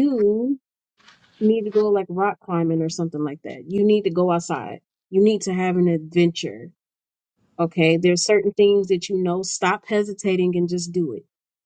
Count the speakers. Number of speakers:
1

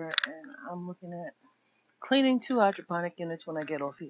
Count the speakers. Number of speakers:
1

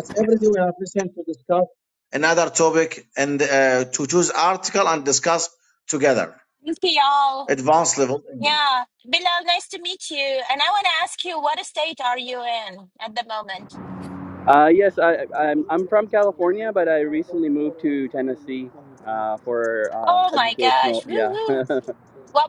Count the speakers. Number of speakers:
3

